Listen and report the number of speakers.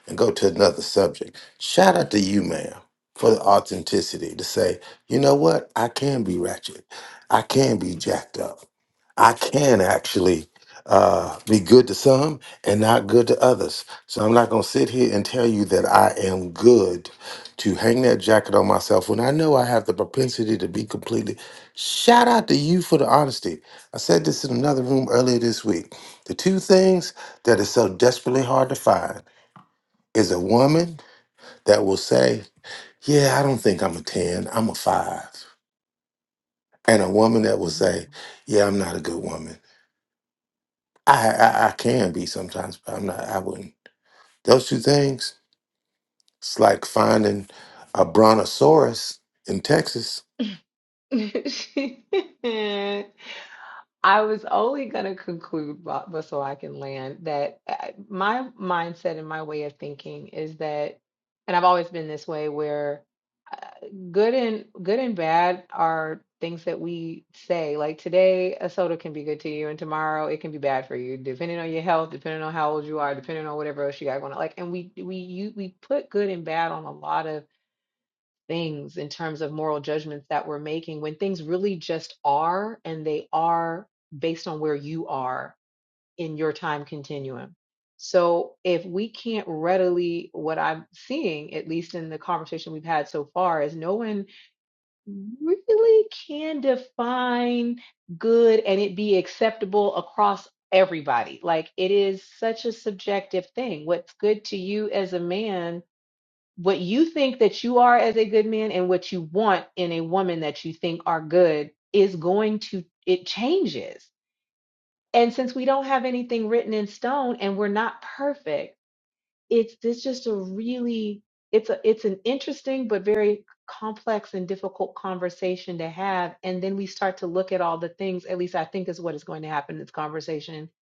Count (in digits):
2